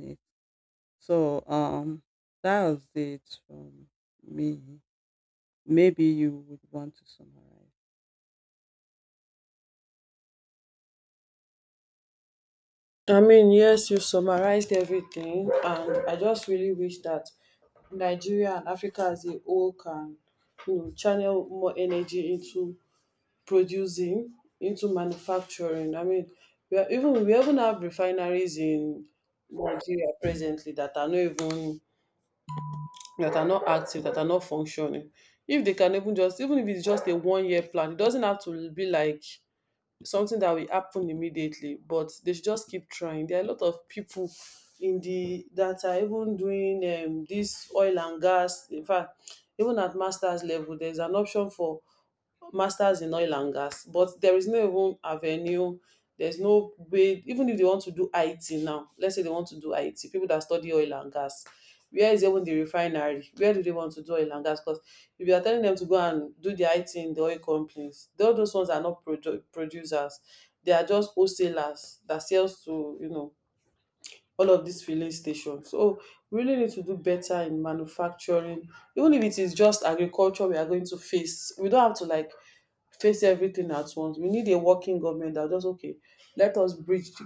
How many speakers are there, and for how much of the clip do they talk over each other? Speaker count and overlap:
2, no overlap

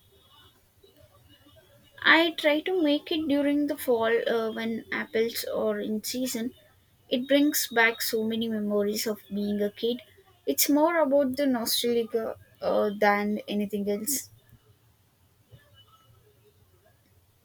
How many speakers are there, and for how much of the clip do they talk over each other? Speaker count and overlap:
1, no overlap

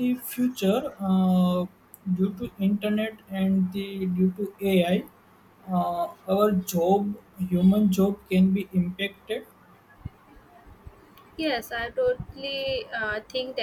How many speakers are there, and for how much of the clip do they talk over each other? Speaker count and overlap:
2, no overlap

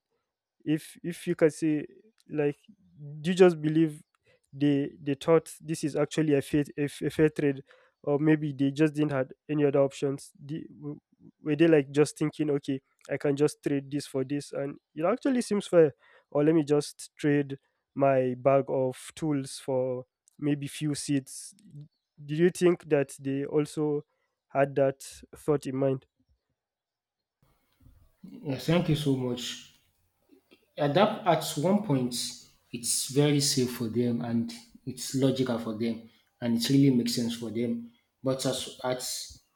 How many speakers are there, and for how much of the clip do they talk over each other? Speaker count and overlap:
2, no overlap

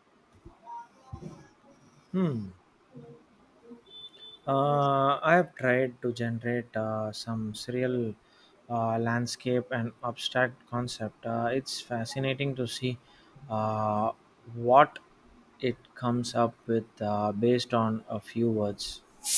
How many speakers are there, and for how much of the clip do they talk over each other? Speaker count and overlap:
1, no overlap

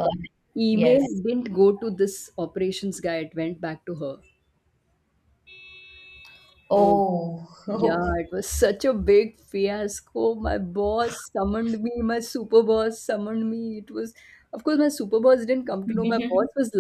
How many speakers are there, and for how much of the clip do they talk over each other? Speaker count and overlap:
2, about 8%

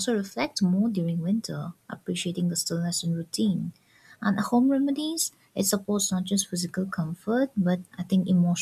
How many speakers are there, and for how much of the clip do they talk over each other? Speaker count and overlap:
1, no overlap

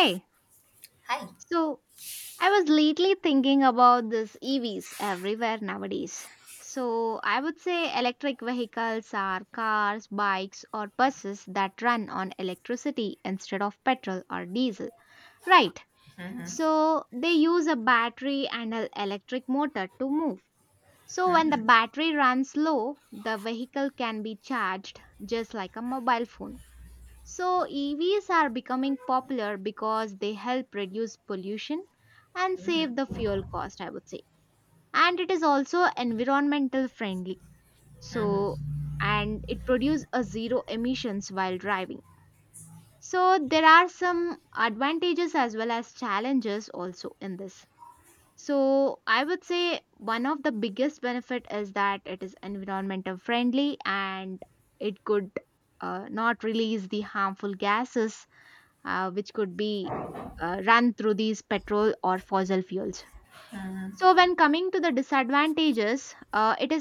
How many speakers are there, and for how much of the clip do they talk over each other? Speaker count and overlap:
2, about 1%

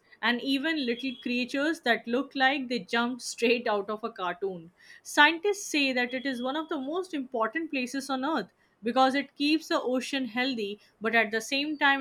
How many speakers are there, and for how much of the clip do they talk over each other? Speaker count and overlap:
1, no overlap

